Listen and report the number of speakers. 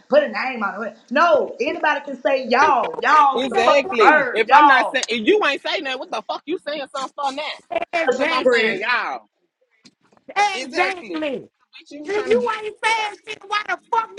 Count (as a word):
three